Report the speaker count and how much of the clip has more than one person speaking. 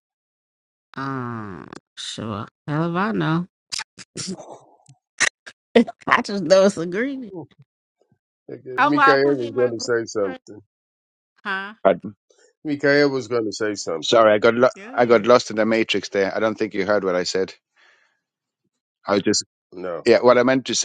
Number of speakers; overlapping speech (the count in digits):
3, about 10%